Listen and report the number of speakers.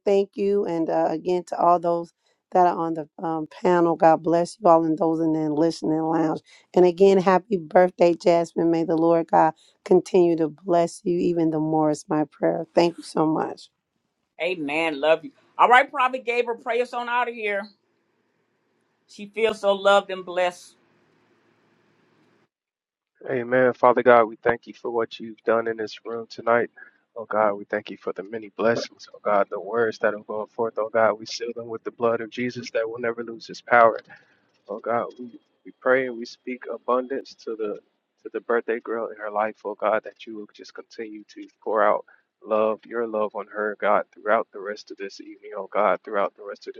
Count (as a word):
three